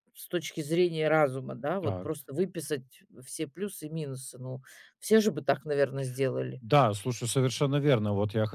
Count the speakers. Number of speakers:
two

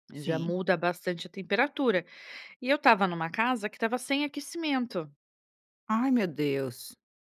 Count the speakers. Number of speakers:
two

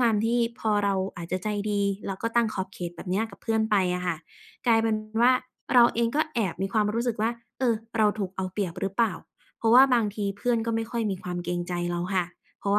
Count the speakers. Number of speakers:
one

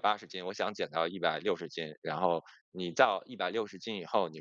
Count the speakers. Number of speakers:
one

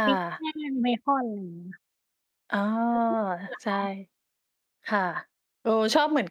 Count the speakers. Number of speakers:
two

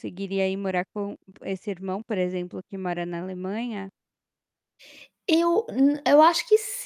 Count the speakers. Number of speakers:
two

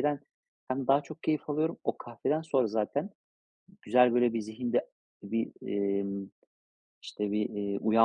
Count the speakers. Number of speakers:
one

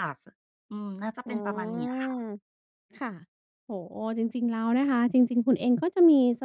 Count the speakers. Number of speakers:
two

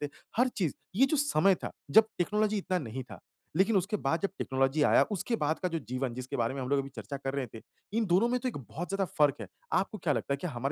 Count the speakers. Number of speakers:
one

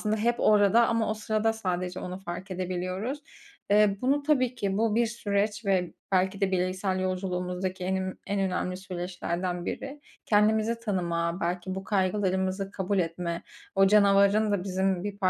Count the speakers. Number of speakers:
one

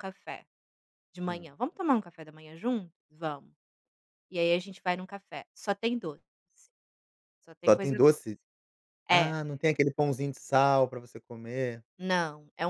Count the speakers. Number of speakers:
two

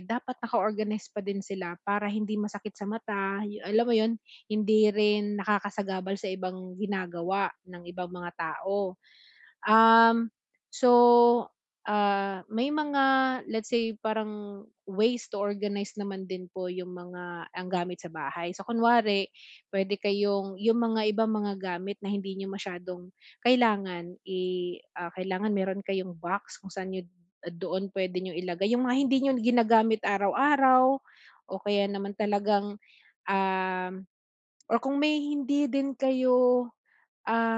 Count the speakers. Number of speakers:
one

